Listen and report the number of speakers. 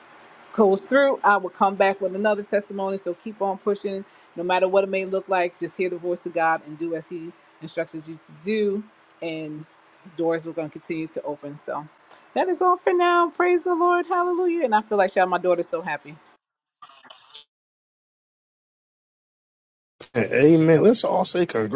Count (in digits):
2